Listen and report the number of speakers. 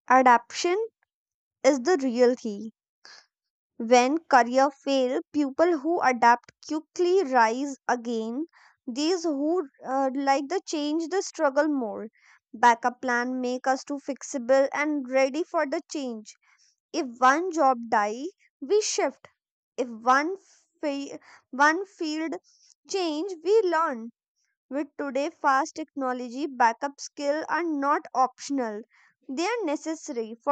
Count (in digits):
1